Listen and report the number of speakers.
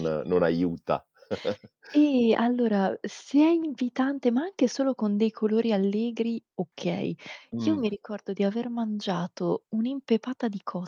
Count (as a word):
two